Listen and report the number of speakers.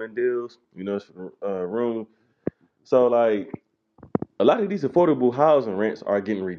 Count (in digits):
1